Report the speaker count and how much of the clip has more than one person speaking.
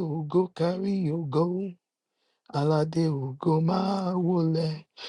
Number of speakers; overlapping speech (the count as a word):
one, no overlap